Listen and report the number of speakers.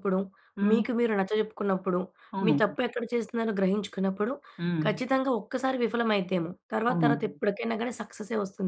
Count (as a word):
two